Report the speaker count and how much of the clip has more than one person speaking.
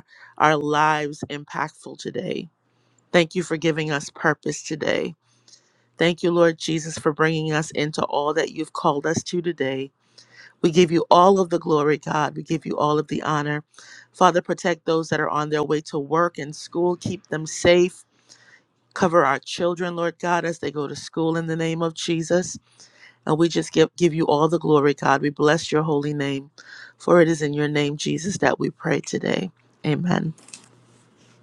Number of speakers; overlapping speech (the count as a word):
one, no overlap